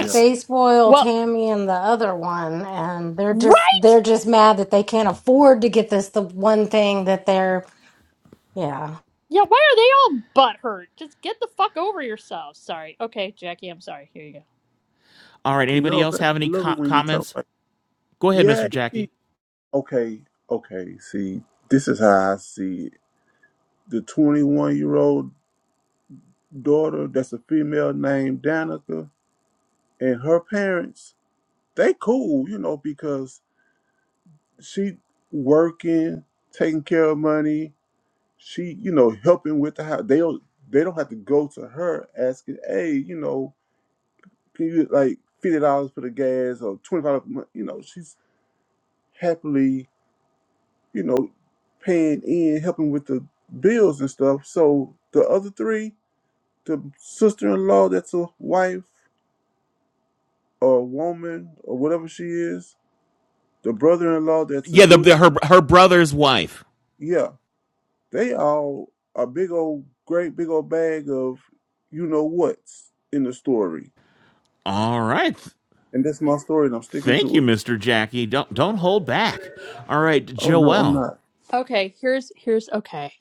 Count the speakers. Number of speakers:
4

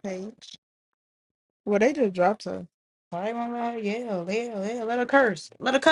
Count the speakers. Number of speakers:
2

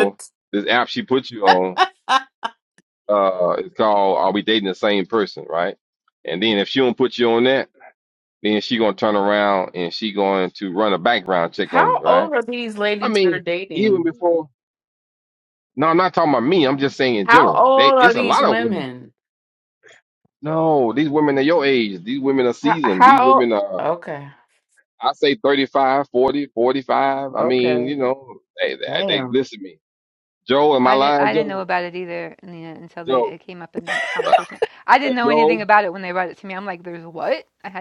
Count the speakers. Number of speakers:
3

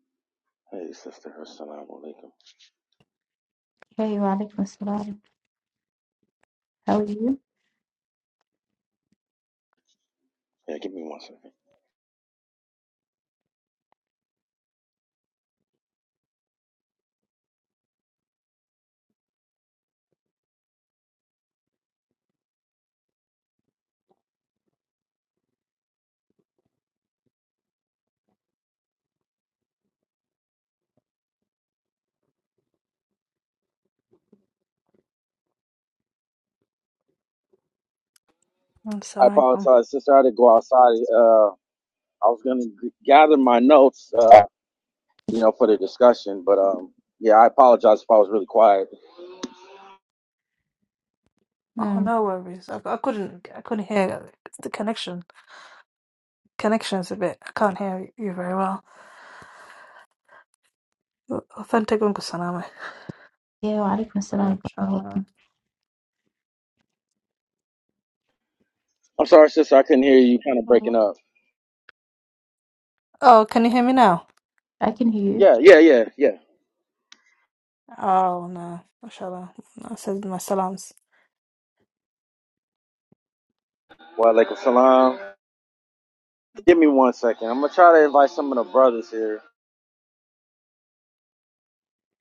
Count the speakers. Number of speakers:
3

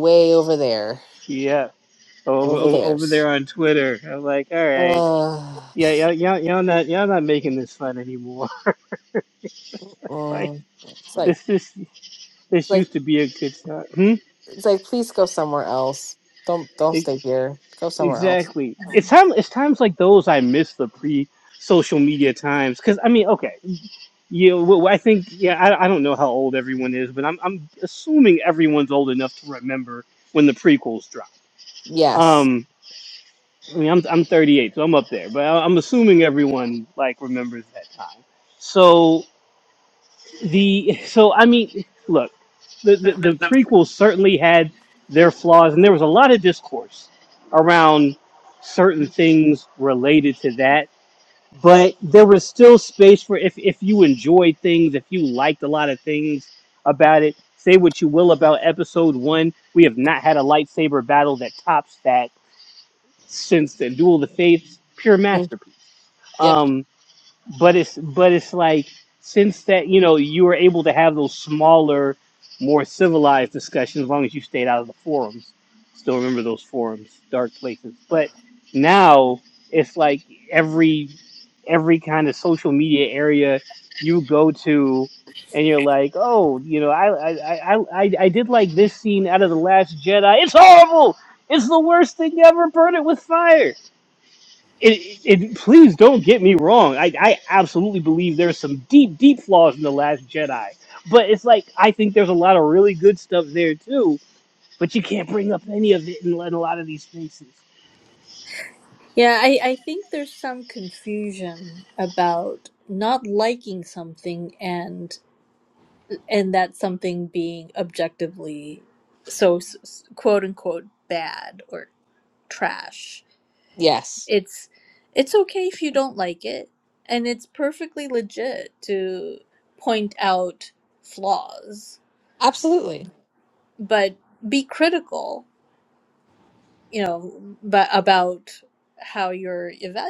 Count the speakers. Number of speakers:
3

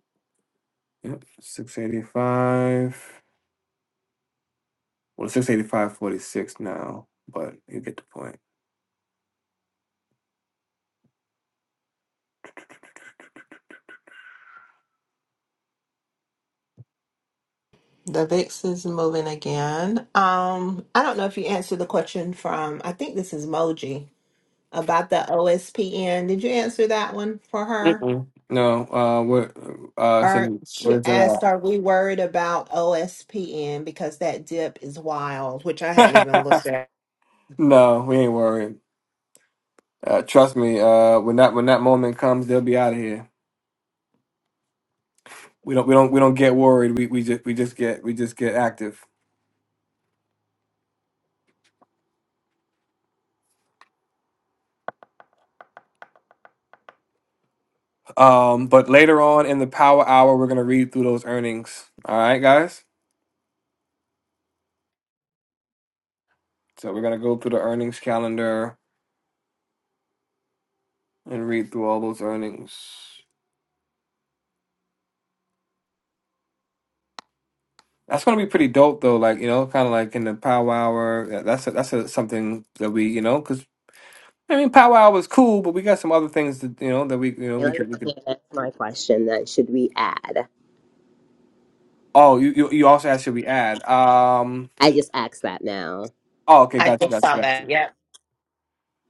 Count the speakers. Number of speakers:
3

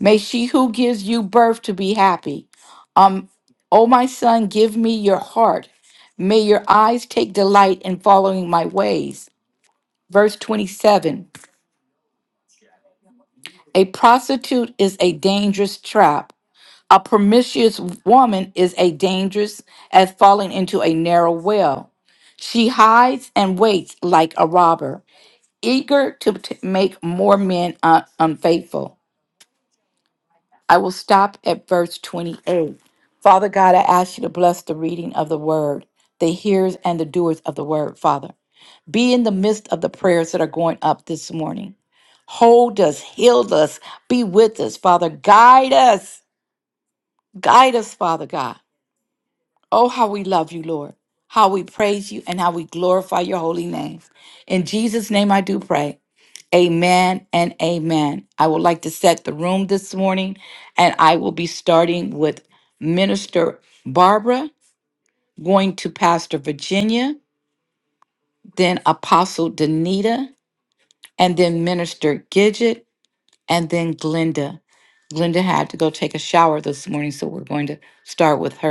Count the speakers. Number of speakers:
1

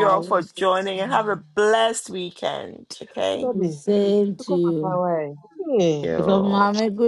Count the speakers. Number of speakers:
3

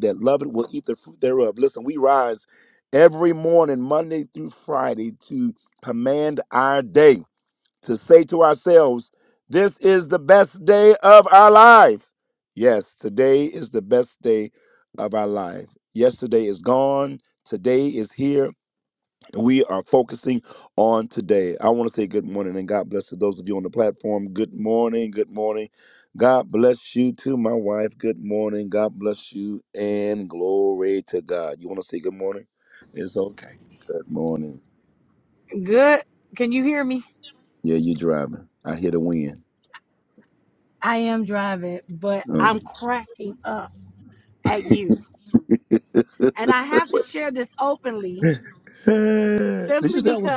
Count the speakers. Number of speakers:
2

